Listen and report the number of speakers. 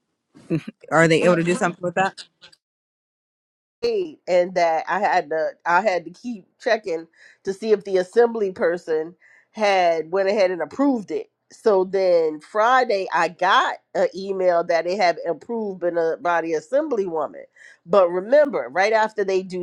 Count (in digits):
2